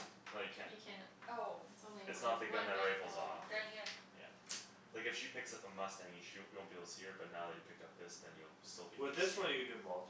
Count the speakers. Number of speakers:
four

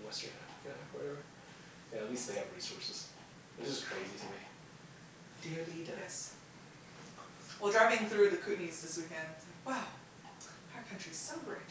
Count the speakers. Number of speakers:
two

